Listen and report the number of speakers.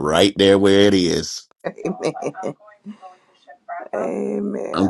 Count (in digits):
2